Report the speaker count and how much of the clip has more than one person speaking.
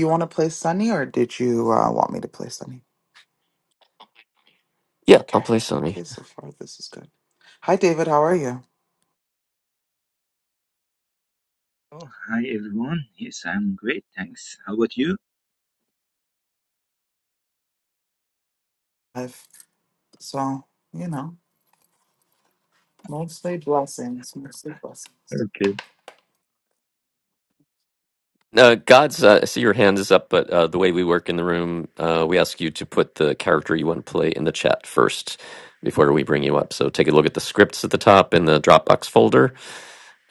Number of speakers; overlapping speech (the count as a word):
three, about 2%